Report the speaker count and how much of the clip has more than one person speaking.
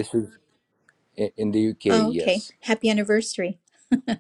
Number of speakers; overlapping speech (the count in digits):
2, about 10%